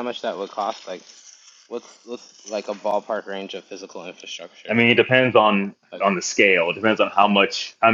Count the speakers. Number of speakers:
two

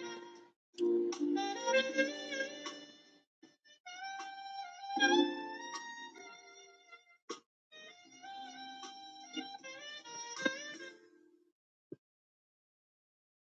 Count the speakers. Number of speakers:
zero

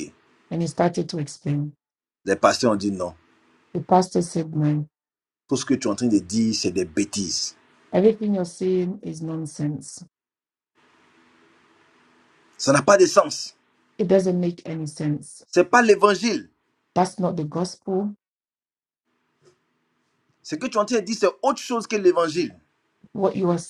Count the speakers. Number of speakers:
two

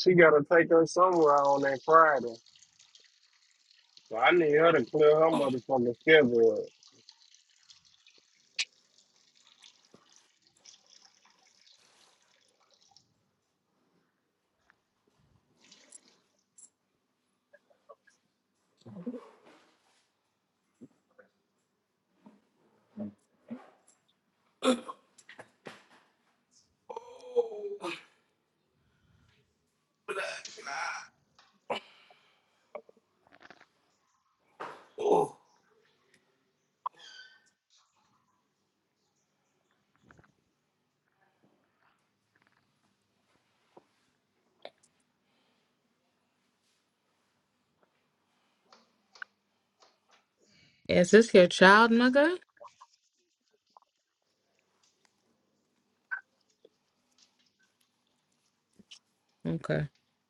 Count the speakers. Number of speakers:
three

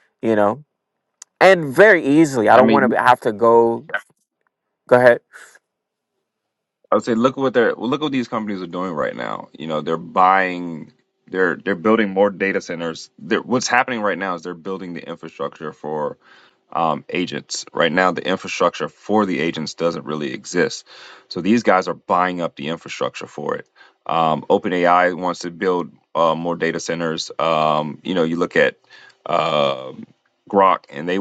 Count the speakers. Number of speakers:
two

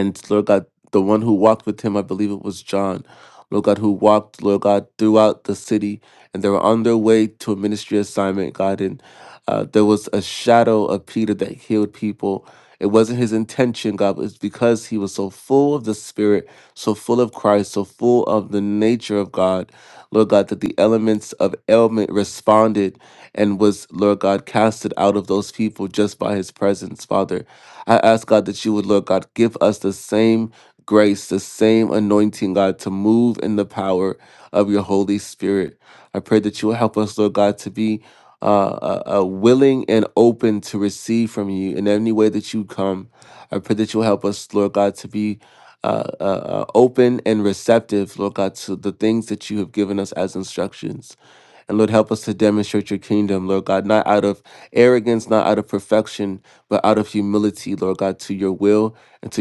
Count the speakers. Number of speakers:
one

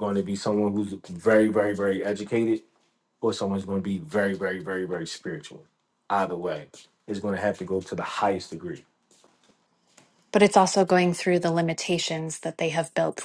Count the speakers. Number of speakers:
two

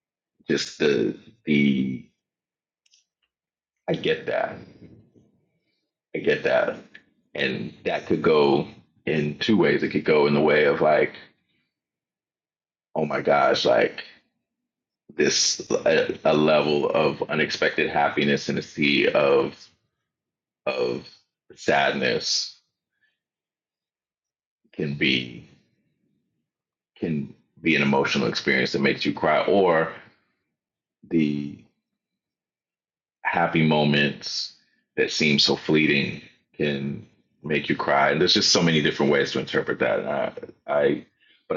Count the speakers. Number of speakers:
one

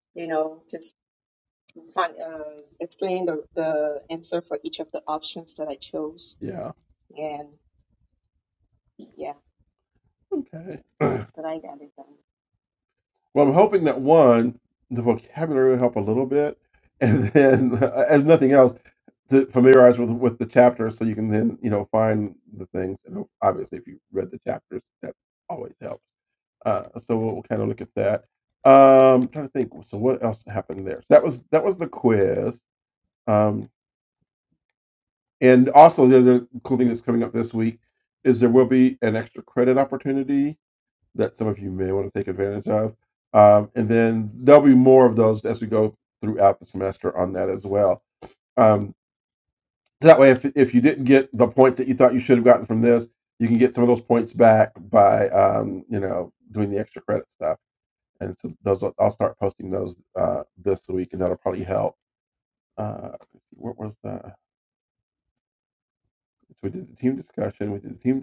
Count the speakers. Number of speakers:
two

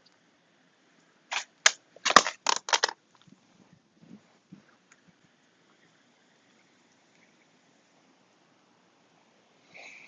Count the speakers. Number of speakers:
zero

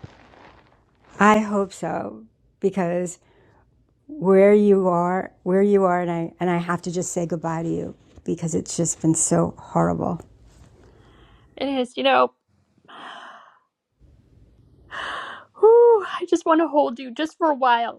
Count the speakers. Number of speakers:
two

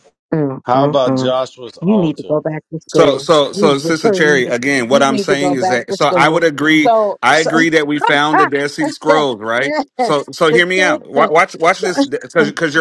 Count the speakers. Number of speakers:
three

